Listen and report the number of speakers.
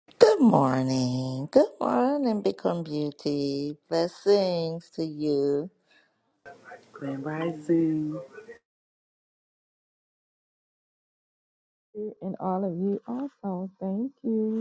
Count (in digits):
3